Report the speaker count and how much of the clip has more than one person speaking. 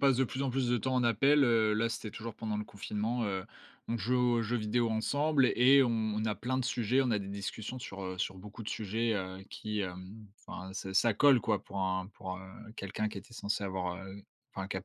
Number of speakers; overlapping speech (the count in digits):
1, no overlap